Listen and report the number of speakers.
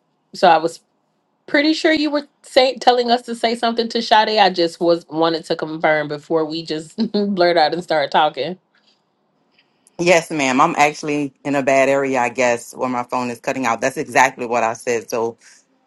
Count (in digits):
2